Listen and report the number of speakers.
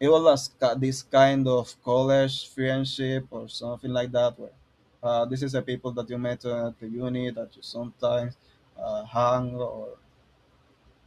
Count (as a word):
one